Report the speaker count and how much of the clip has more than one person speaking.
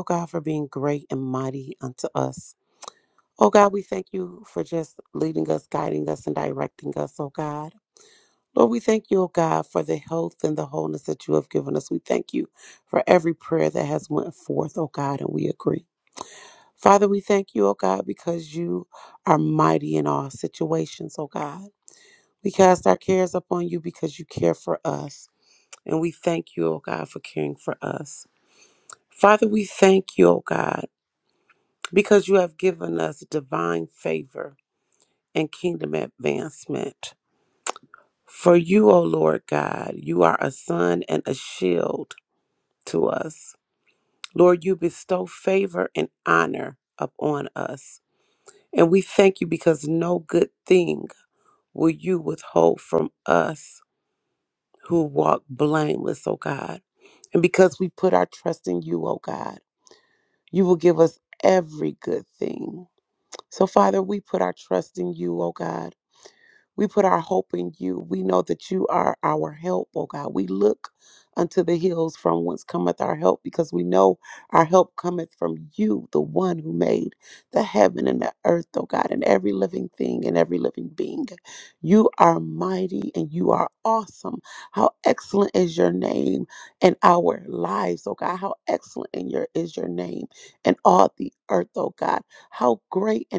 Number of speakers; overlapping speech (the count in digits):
1, no overlap